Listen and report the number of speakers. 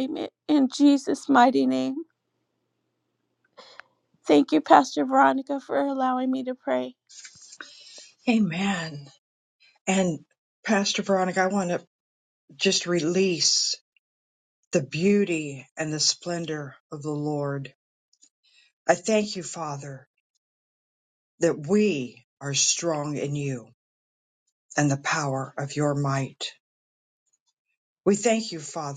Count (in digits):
2